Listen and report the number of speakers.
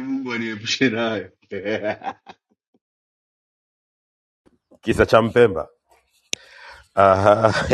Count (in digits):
2